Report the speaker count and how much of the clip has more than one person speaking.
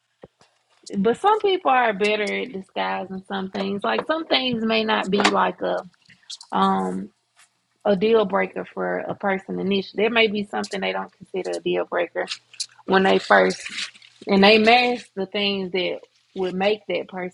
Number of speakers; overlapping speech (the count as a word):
one, no overlap